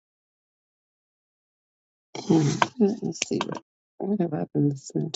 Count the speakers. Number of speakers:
1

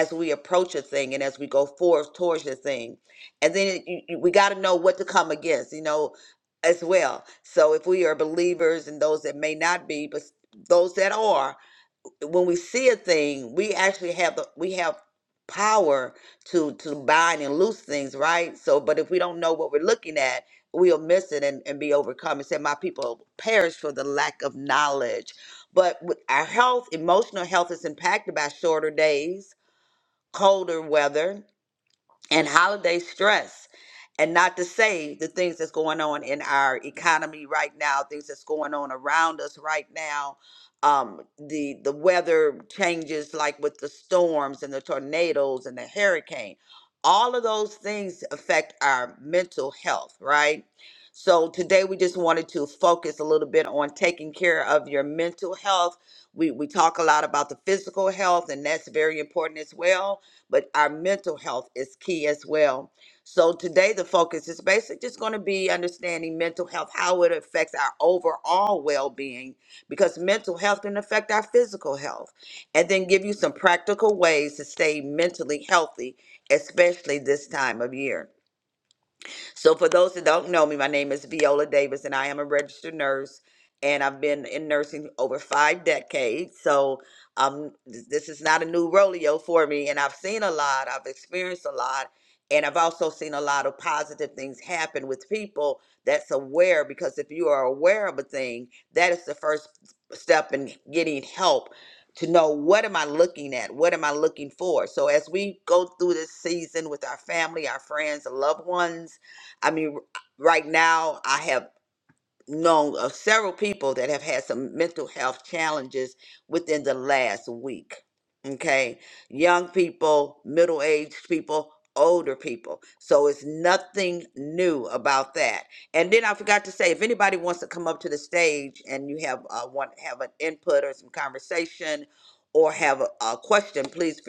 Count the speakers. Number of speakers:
1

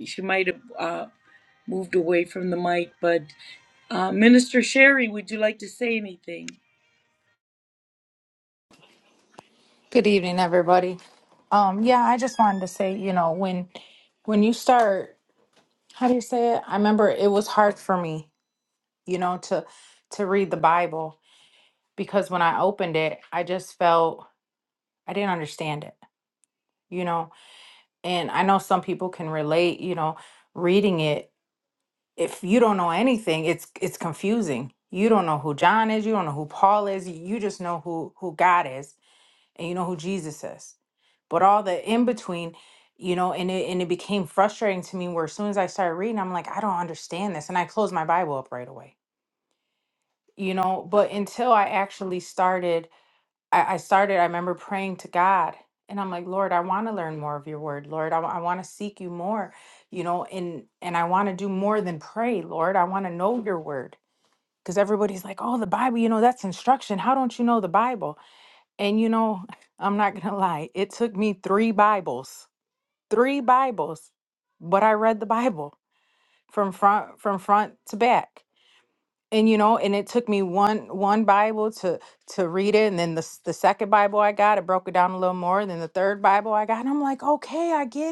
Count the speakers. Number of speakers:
2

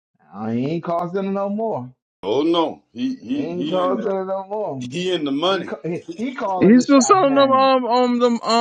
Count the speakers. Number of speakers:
3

